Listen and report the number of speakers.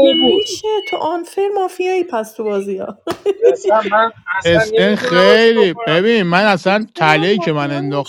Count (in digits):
3